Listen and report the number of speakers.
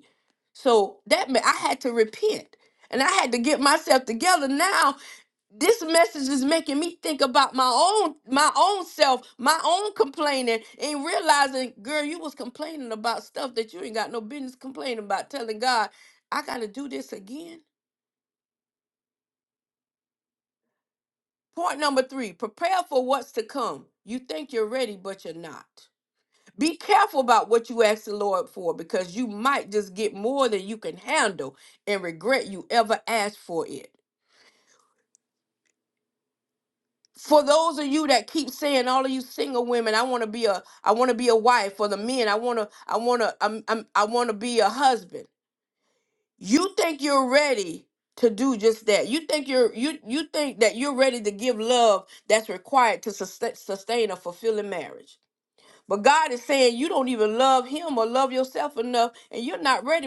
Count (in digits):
1